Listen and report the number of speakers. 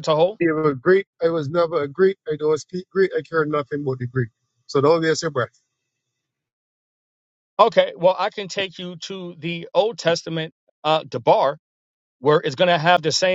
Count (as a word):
two